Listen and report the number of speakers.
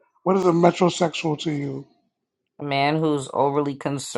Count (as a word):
two